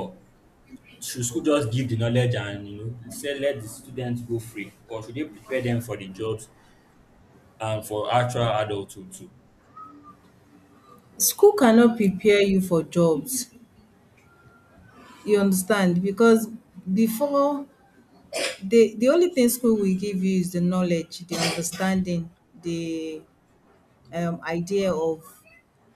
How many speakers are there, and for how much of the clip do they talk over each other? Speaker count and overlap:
2, no overlap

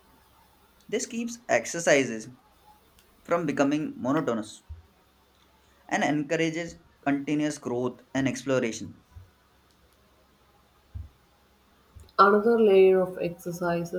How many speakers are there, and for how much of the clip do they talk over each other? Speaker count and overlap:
2, no overlap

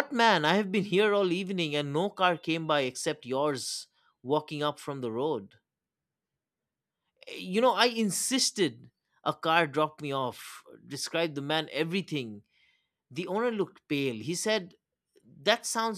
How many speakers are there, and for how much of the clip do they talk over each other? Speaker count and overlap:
1, no overlap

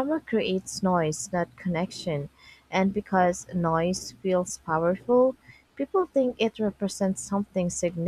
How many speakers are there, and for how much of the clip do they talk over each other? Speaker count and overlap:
1, no overlap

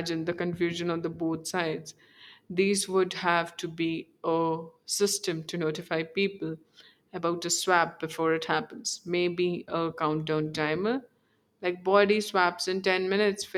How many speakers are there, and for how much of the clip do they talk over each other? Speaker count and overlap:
1, no overlap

